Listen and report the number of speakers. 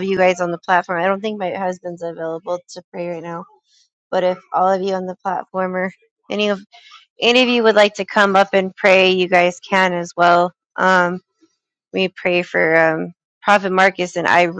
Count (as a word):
one